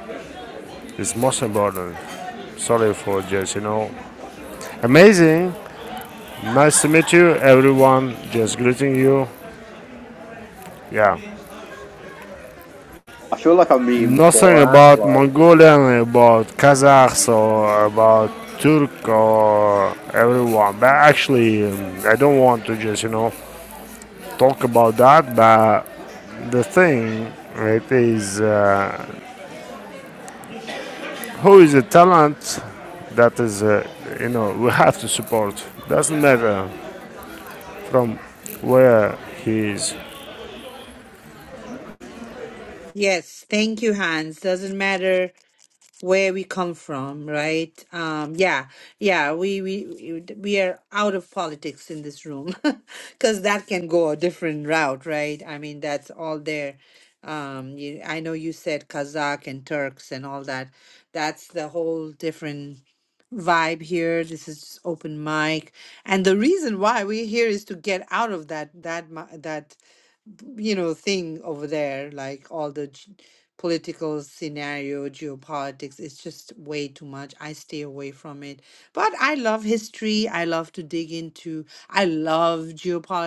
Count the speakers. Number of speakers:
3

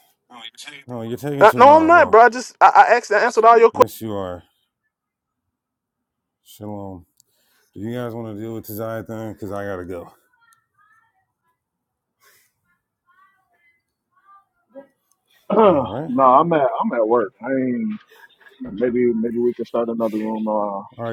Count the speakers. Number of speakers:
3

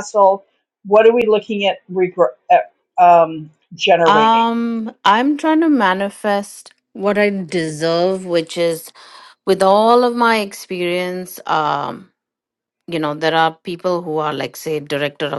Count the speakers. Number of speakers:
2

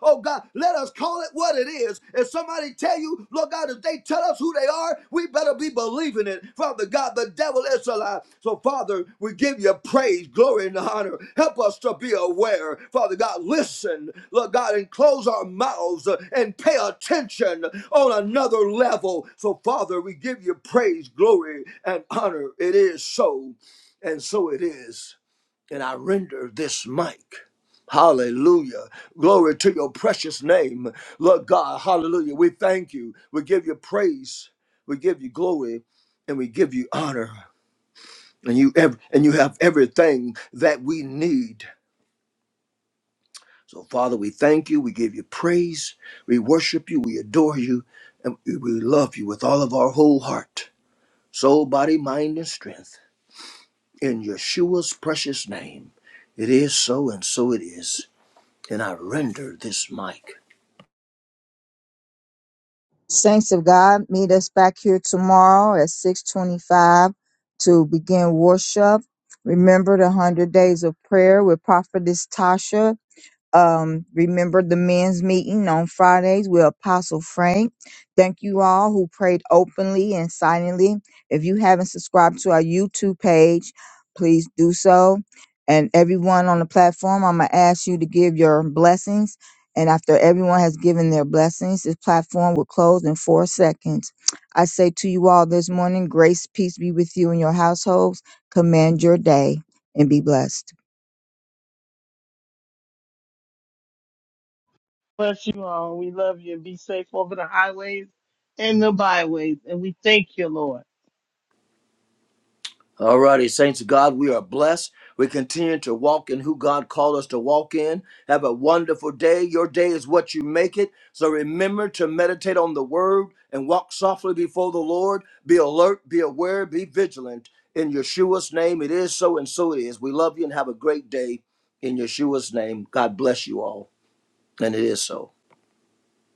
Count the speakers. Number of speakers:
3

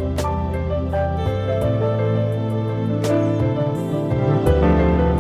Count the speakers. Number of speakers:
0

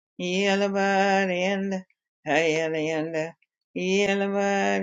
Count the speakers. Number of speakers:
1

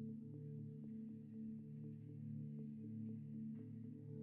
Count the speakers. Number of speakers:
0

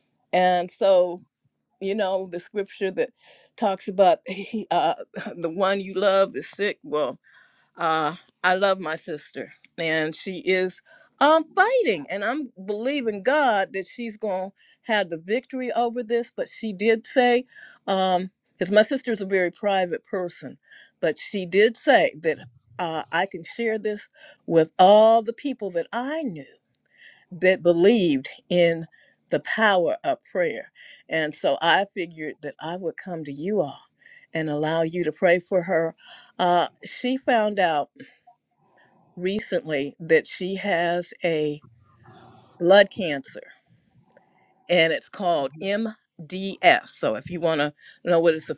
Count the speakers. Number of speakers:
1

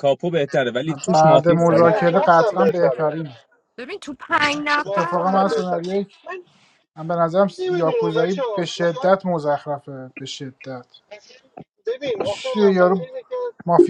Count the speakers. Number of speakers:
4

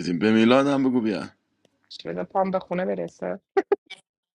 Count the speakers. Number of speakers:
2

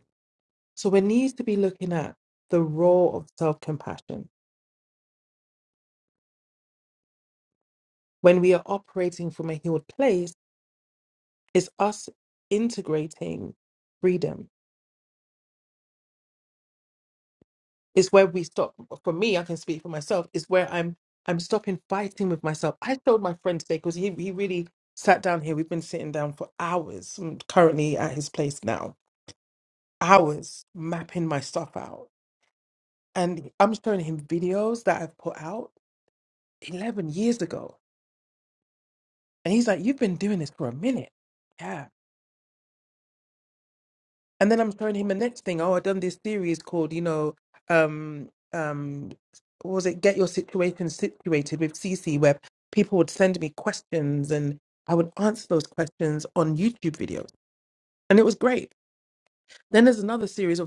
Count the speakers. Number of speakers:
1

